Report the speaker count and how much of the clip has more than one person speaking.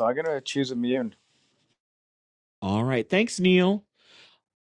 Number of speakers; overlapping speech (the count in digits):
2, no overlap